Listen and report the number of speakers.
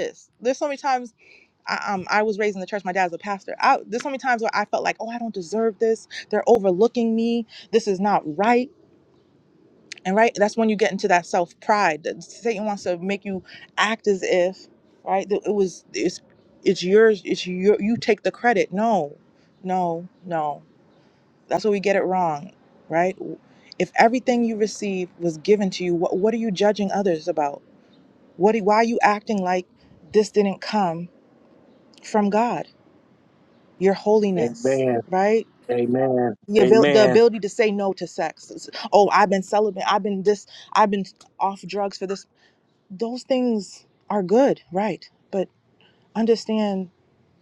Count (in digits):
2